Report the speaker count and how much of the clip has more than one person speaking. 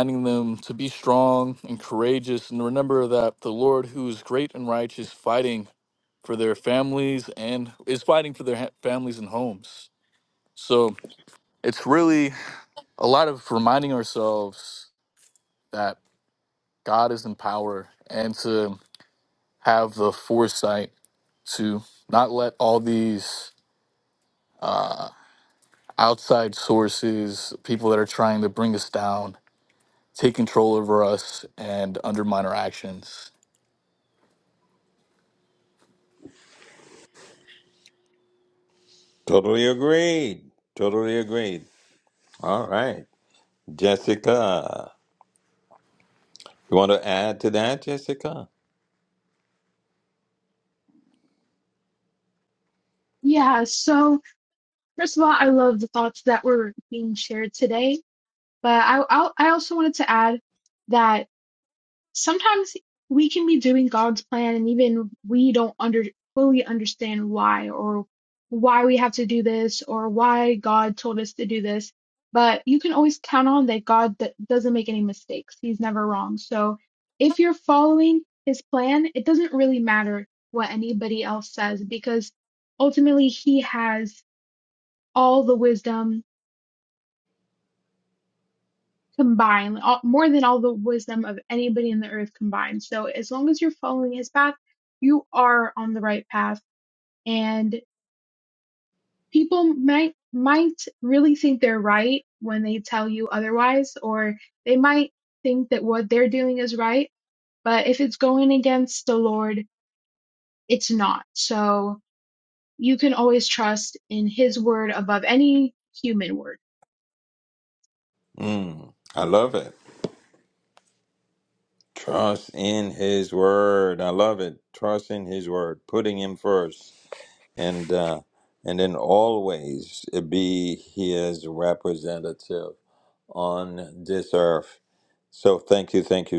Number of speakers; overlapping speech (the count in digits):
3, no overlap